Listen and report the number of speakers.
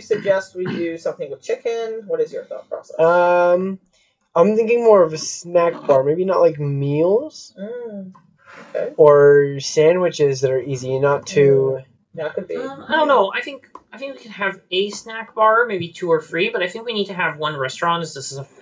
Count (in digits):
3